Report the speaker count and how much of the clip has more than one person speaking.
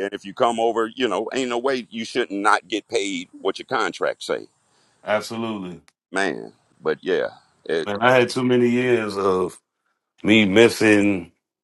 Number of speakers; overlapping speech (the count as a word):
two, about 3%